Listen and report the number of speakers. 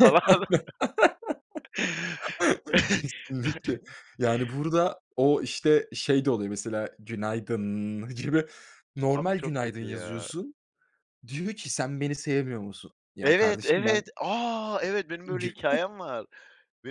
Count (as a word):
two